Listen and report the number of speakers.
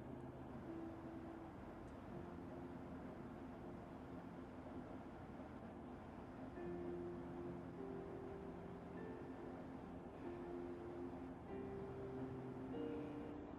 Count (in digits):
0